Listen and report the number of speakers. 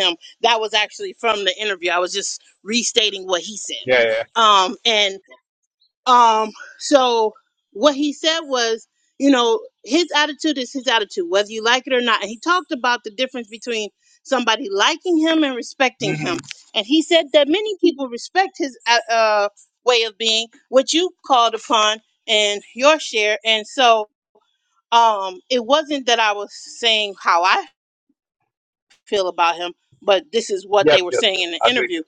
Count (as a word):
two